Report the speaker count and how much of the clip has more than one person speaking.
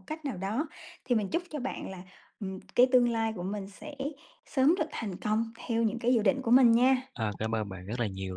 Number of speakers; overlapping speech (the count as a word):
two, no overlap